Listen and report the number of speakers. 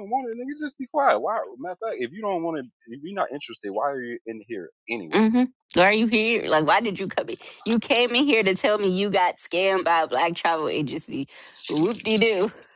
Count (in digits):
2